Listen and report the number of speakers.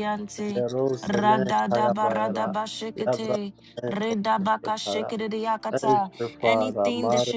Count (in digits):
2